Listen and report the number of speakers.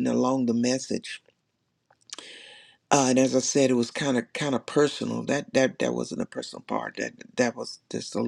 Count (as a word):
one